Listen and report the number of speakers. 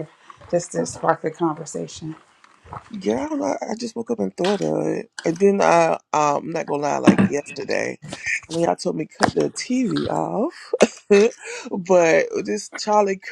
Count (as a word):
two